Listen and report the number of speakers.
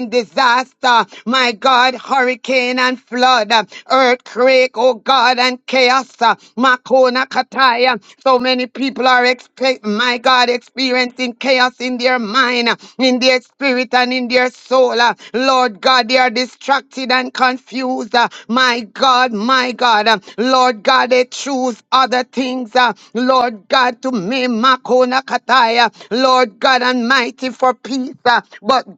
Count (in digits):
1